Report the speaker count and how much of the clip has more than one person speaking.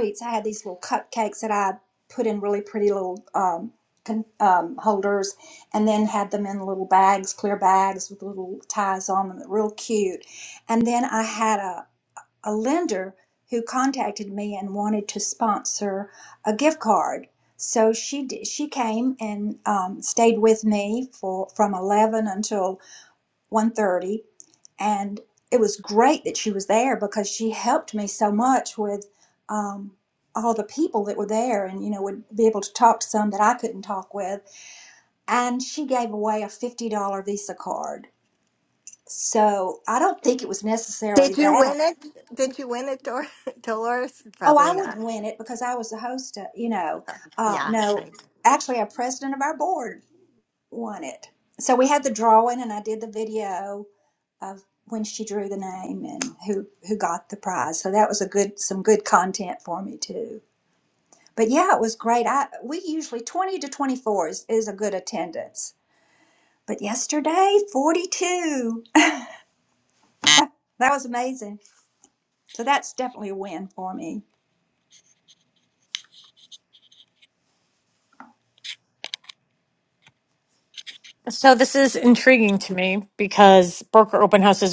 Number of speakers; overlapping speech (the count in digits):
3, about 2%